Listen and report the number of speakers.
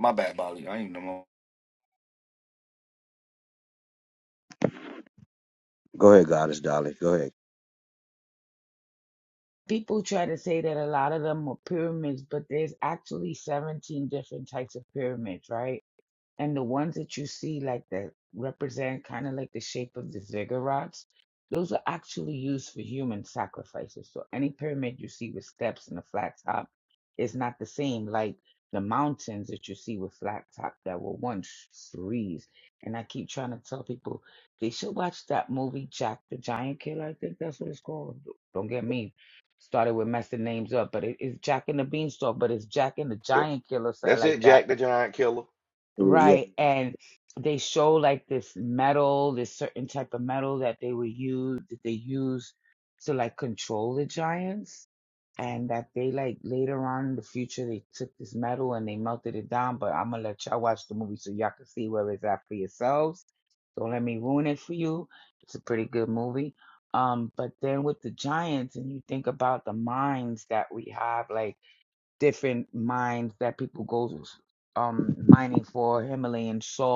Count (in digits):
4